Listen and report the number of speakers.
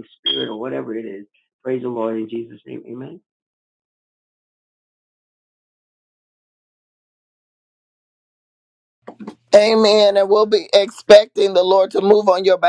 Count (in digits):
2